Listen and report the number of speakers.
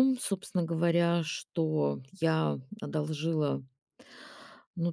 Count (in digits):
1